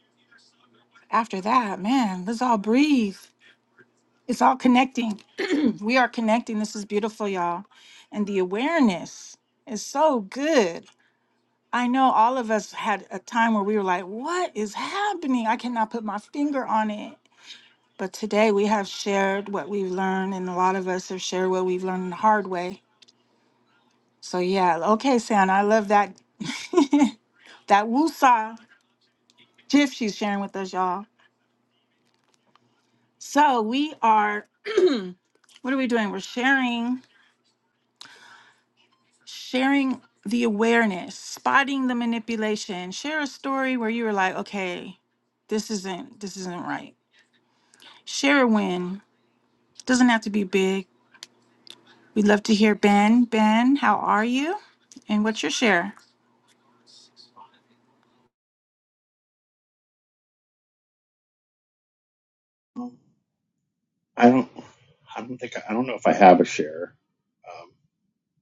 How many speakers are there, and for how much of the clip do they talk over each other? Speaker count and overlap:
2, no overlap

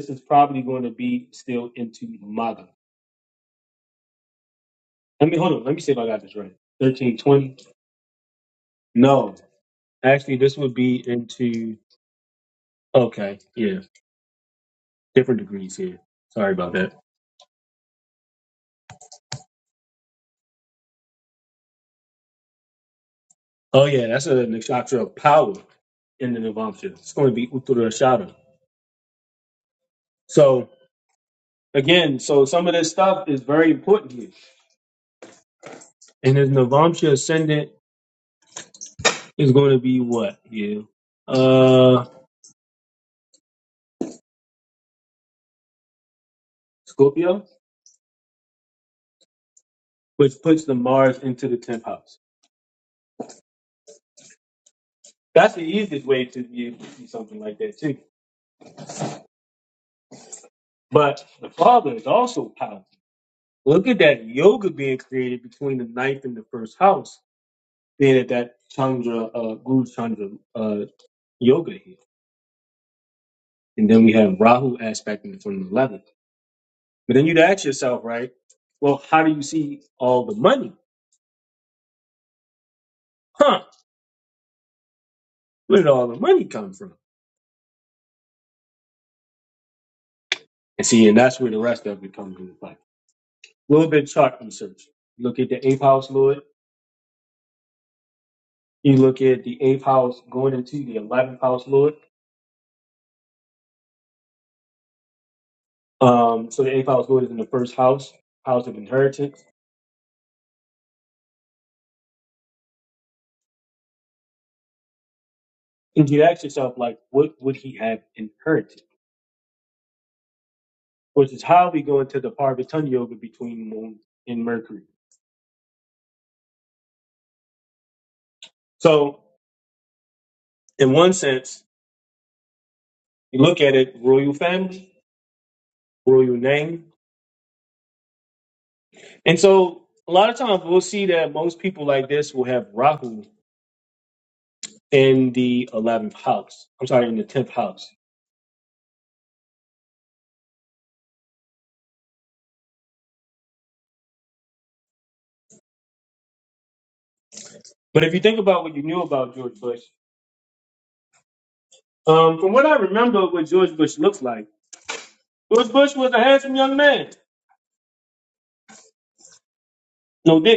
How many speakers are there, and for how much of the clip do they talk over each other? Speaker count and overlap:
1, no overlap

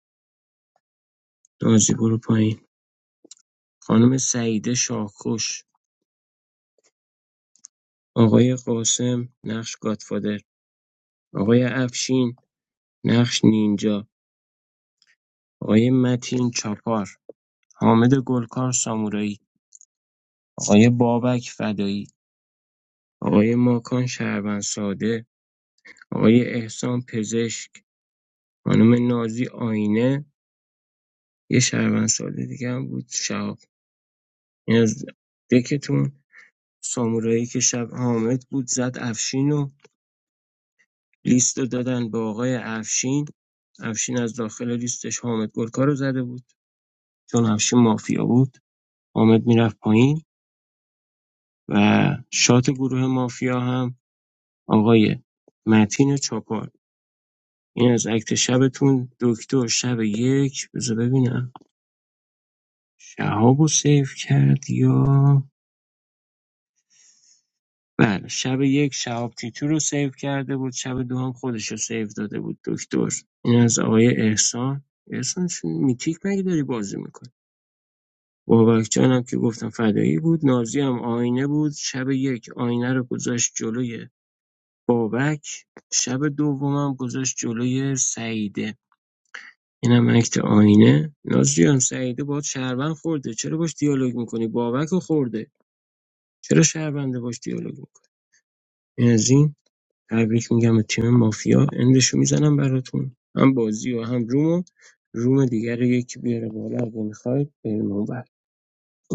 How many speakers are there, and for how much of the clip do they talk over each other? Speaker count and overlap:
1, no overlap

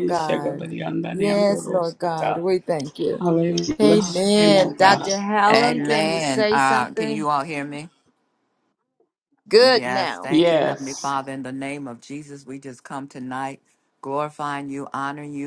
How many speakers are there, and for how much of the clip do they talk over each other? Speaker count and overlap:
3, about 42%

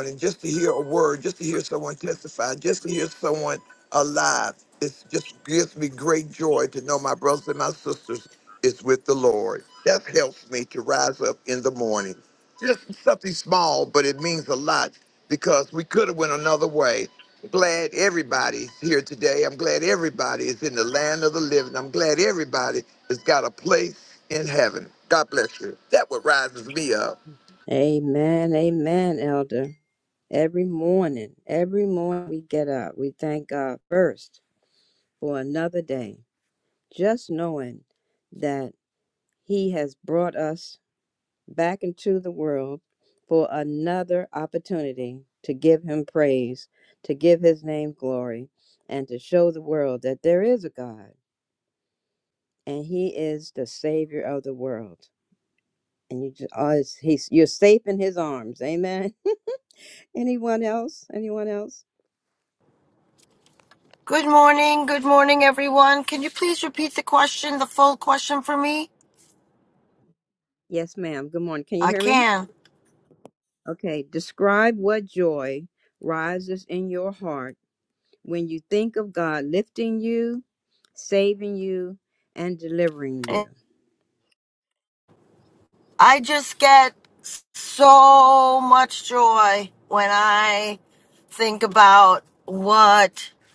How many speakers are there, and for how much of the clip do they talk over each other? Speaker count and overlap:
3, under 1%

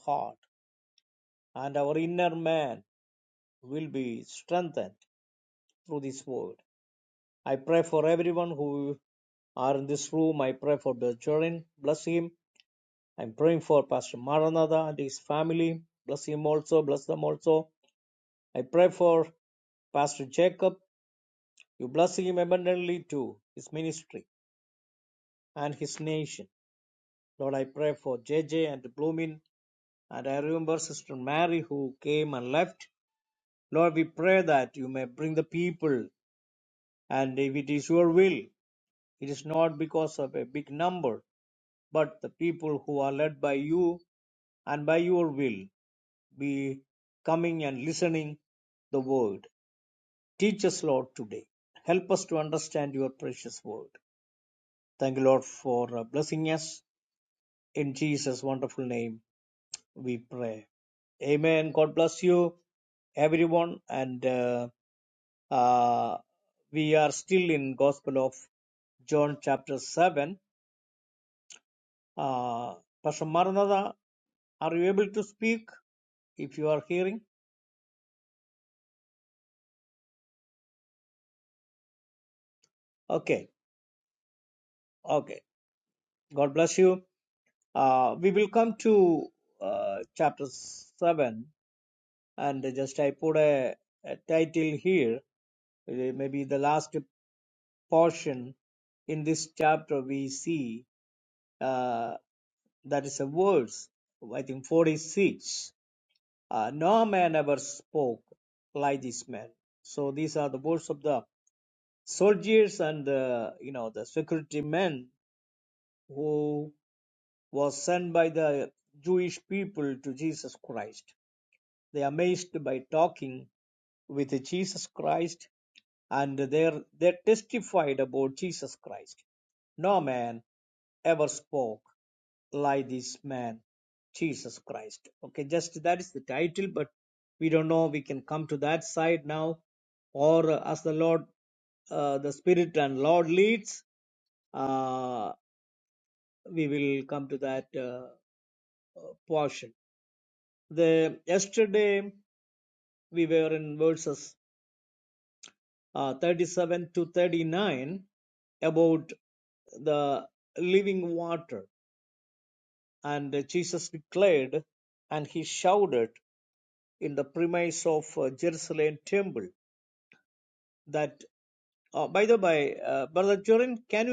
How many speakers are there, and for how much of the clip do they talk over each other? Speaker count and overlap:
1, no overlap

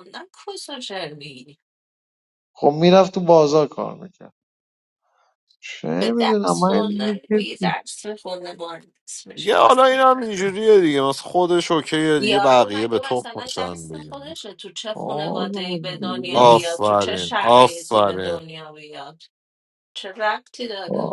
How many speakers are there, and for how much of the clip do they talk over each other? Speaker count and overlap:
3, about 33%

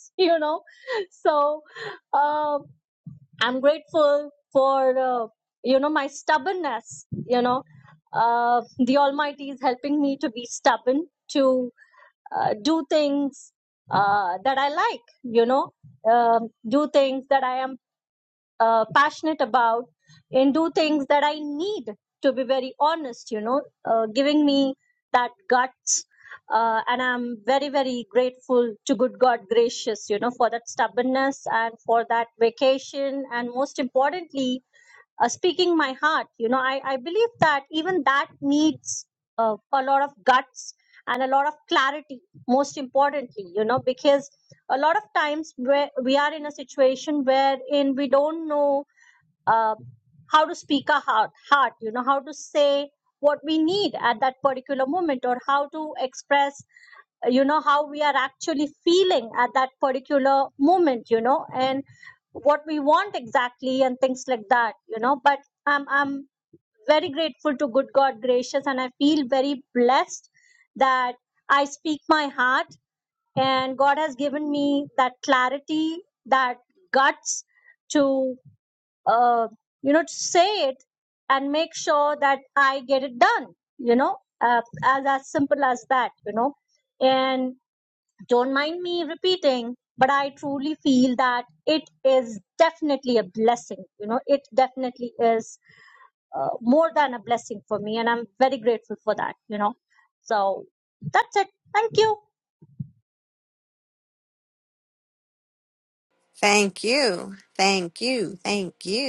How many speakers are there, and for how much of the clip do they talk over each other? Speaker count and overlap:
2, no overlap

